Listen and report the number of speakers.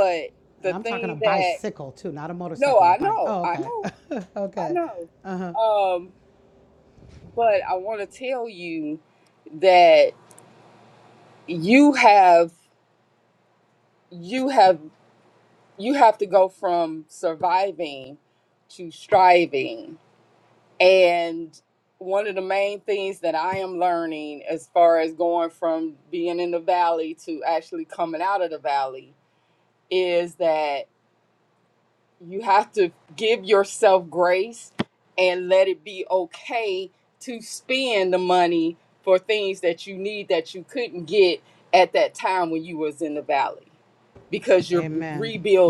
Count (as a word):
two